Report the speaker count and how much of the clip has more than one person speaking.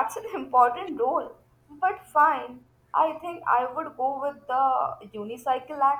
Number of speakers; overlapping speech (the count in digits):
1, no overlap